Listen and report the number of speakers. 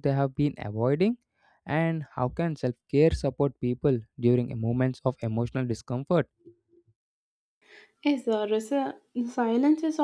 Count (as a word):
two